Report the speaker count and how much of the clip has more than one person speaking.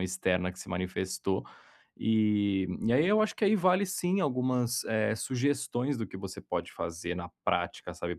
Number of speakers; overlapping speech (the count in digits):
1, no overlap